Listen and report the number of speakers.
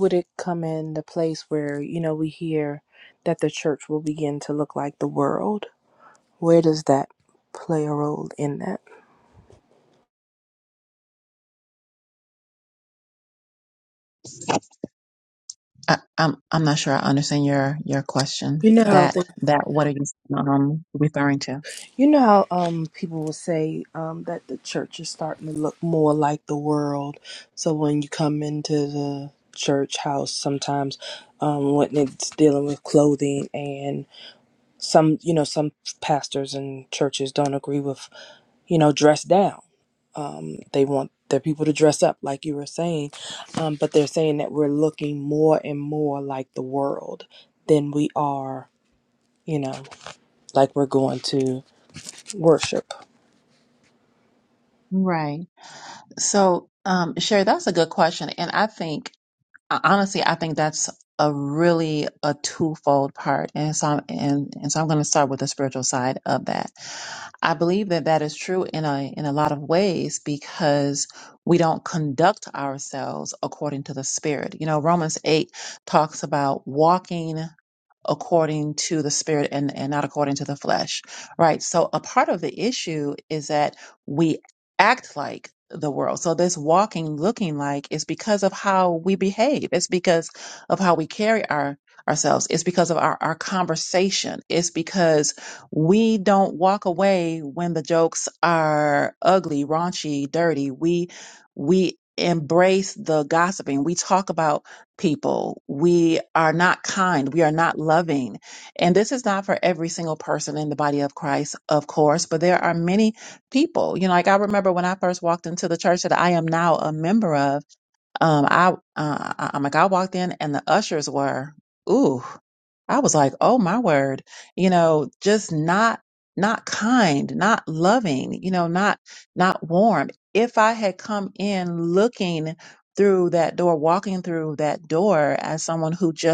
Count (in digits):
2